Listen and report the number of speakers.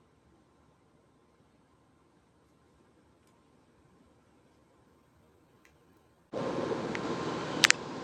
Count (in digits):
0